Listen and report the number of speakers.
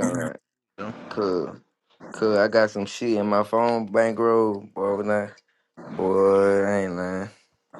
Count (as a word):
one